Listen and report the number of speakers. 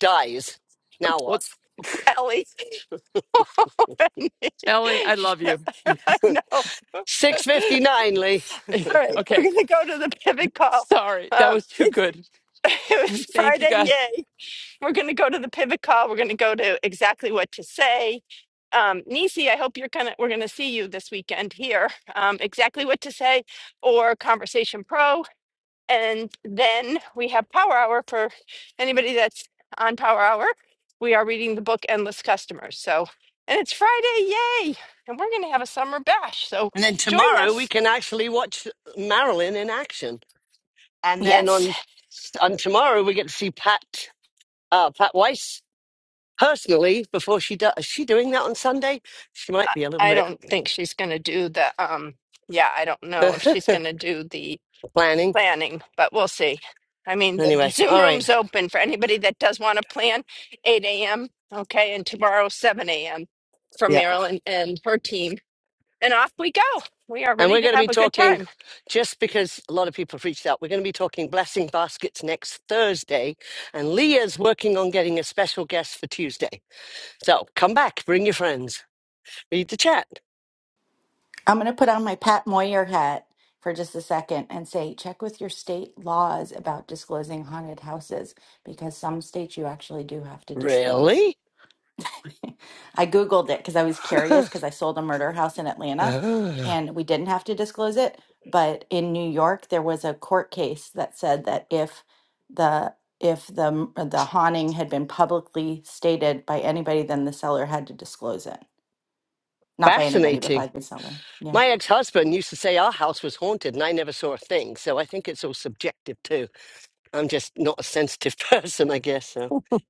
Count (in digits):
4